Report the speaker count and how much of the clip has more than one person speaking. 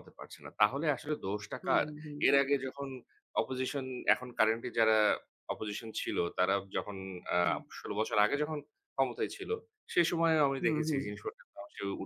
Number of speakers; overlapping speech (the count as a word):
two, about 10%